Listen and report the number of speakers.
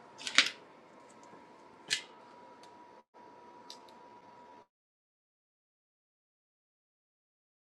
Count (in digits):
0